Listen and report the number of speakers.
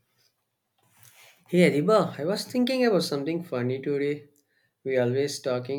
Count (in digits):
1